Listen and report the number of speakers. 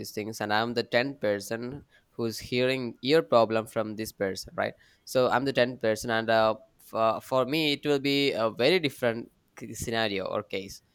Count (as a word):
one